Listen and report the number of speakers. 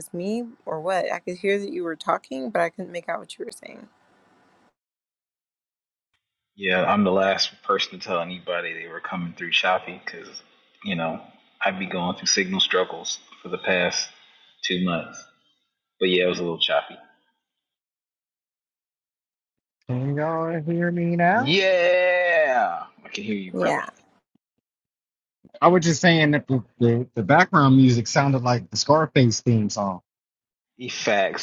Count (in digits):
3